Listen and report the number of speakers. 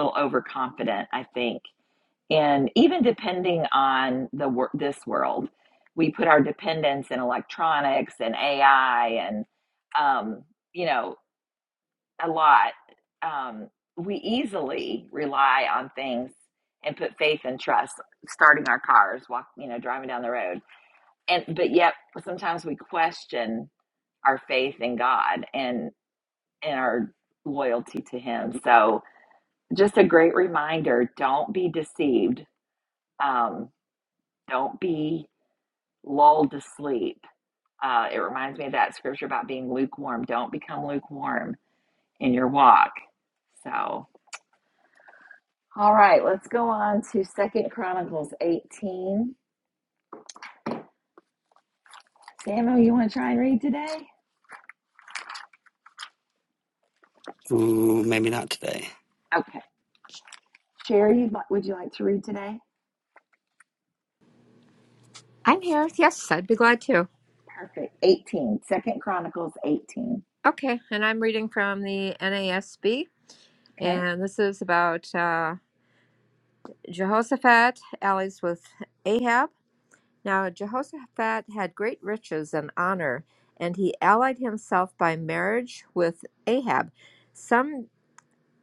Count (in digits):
3